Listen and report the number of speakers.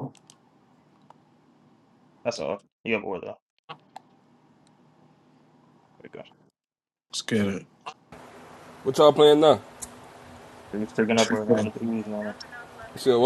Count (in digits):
3